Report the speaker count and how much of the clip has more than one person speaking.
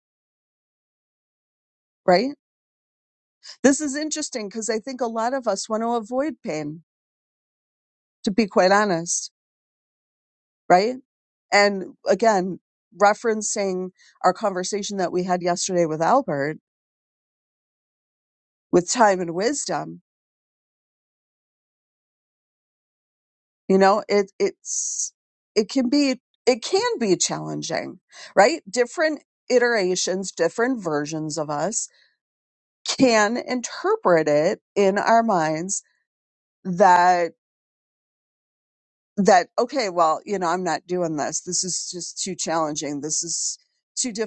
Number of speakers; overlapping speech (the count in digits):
1, no overlap